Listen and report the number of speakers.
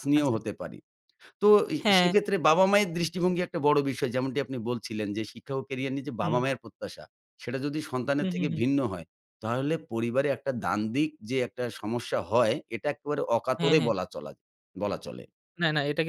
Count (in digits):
2